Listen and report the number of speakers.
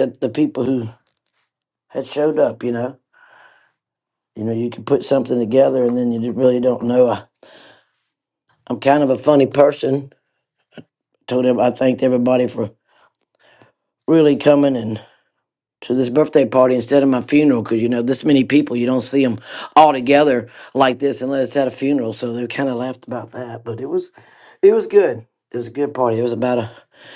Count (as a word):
one